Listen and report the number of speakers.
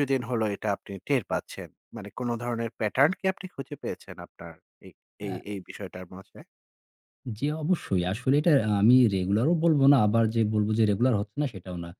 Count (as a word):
two